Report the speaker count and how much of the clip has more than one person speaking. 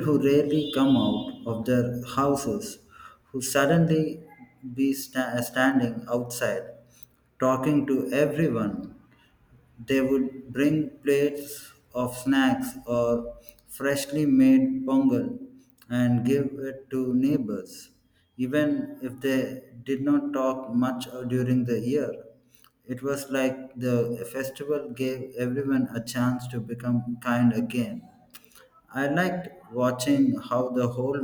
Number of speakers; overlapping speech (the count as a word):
one, no overlap